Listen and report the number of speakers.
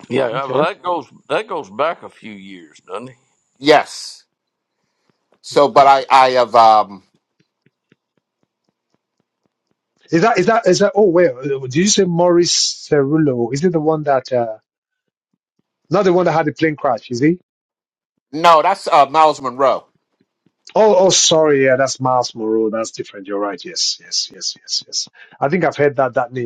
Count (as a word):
three